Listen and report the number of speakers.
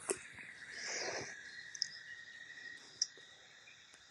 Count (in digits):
0